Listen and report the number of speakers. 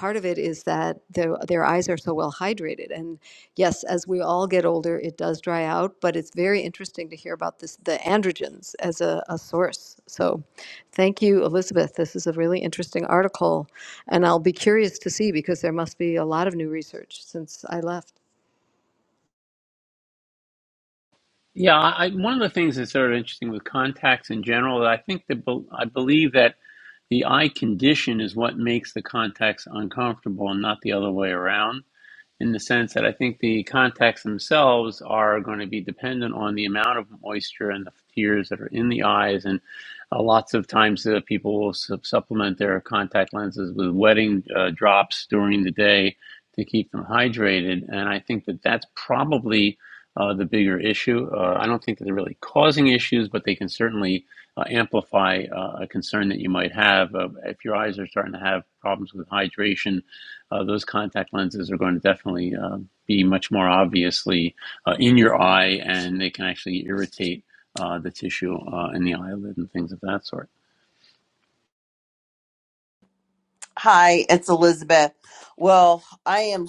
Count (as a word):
three